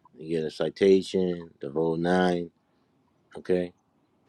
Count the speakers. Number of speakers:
1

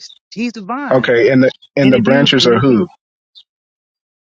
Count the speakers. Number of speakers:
2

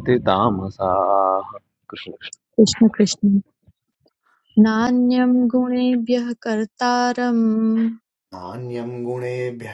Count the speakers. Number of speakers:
3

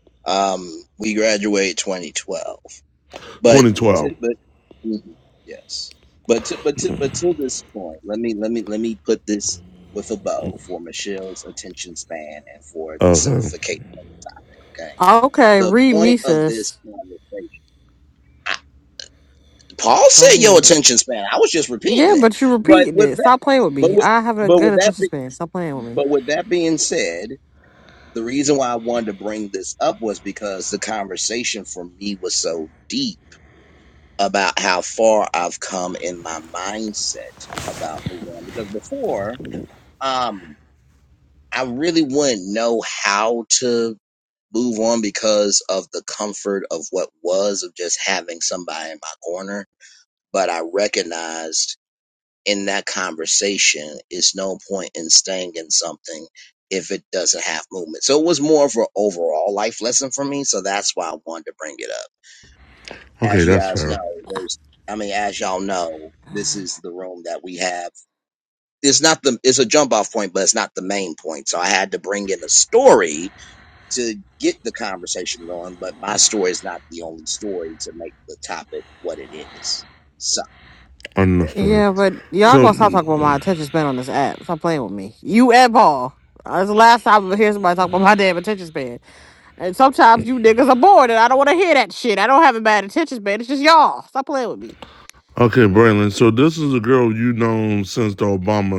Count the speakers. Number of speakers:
3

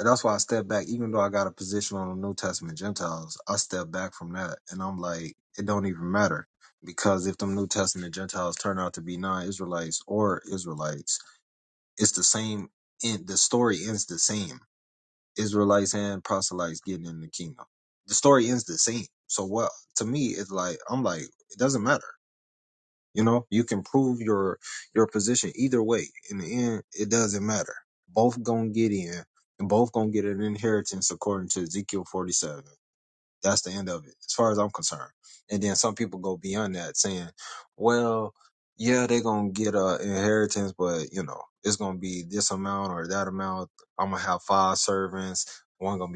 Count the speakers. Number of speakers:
1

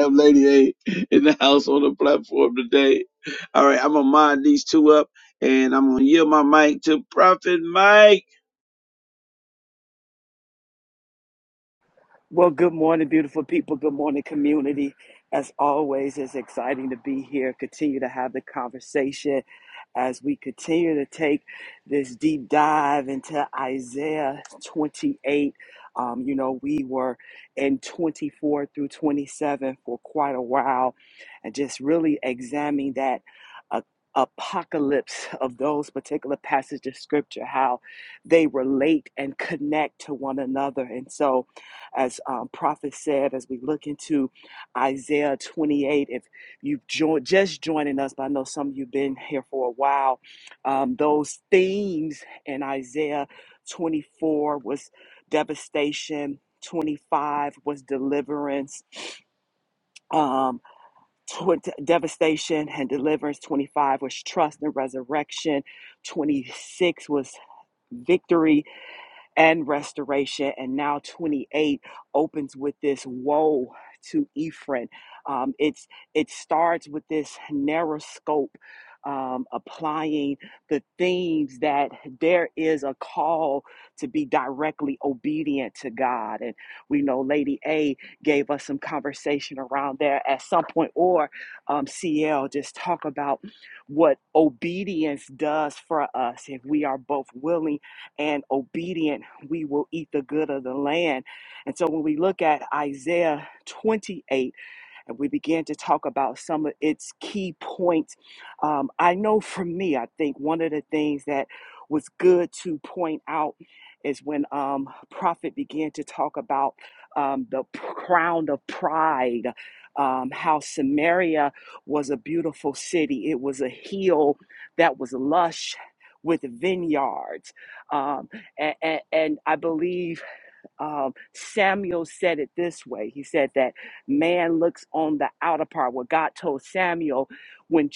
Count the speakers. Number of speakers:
2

